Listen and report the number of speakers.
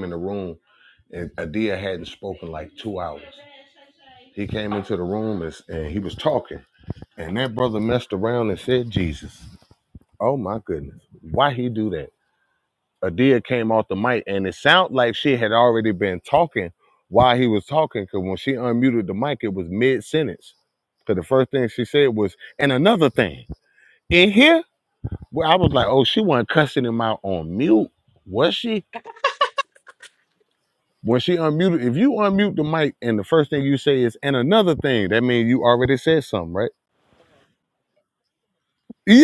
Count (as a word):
one